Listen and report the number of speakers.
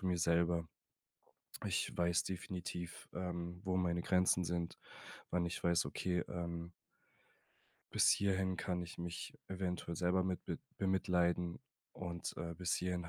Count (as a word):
one